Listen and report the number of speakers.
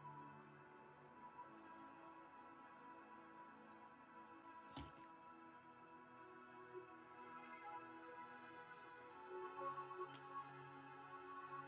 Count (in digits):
0